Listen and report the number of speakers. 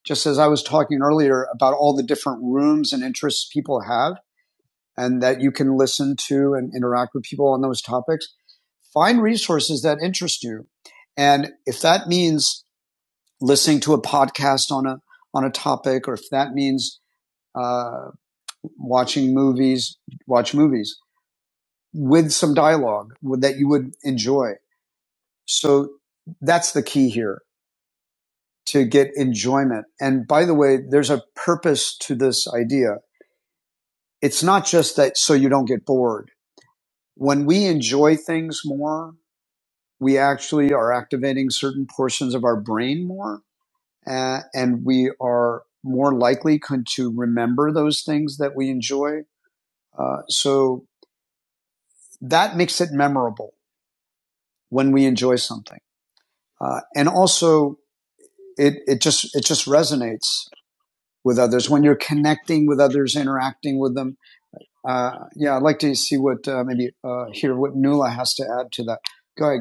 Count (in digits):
1